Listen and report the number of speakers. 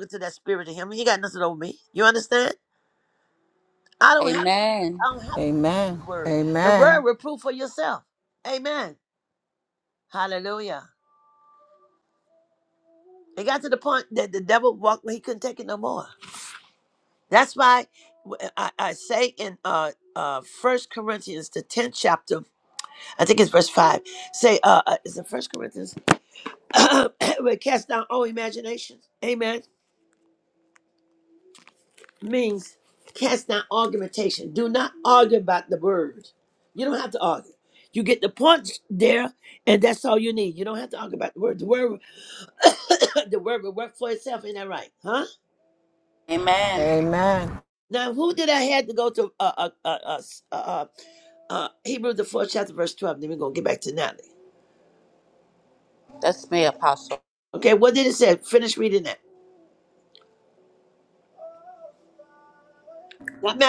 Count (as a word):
three